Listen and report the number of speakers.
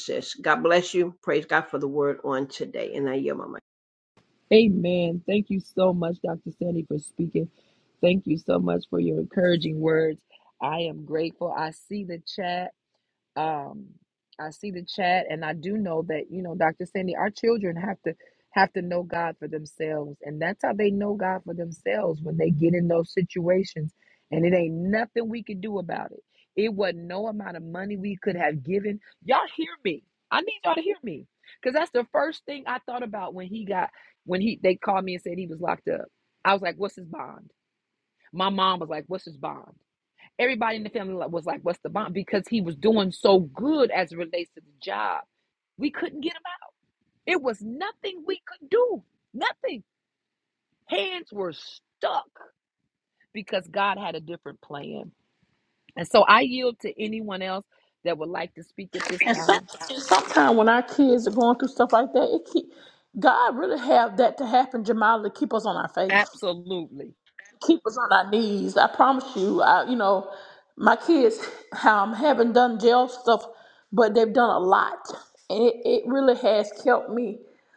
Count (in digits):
3